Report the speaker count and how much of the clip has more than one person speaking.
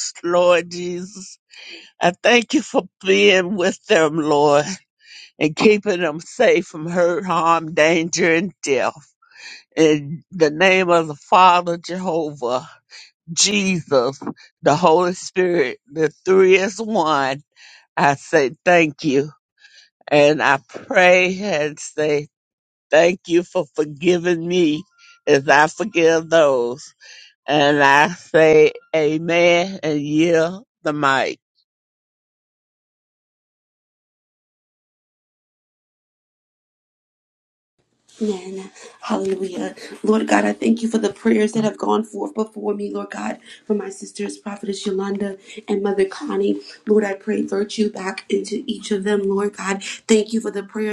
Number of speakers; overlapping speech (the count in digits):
2, no overlap